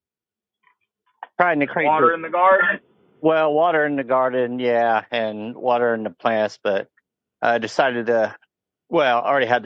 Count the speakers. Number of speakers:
2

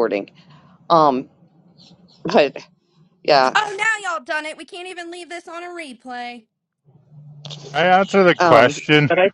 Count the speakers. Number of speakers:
3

